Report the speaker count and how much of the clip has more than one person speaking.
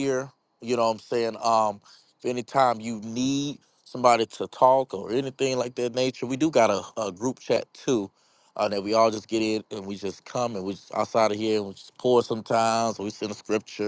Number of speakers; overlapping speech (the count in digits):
1, no overlap